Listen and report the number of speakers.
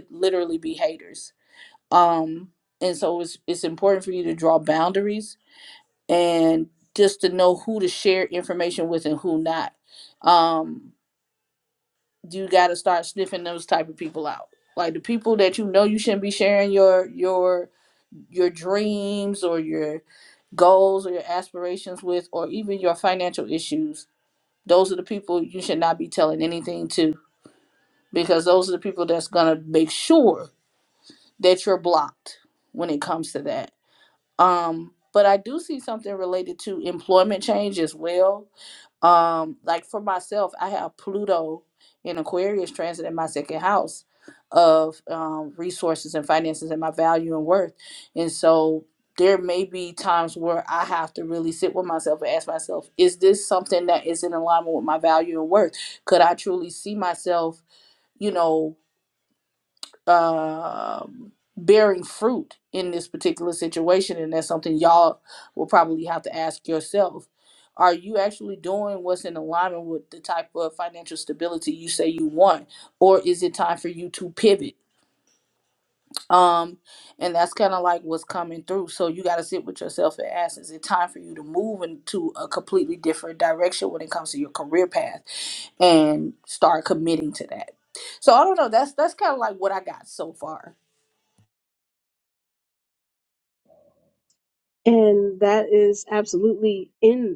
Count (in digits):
2